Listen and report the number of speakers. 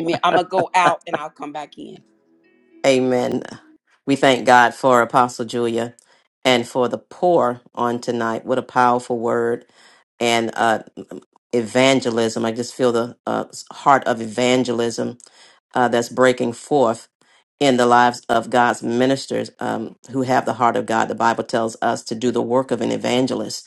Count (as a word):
two